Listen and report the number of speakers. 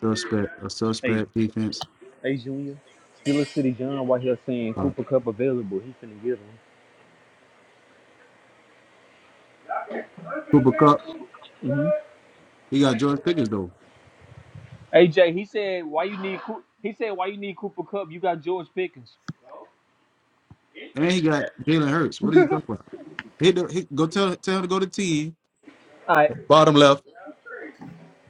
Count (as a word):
two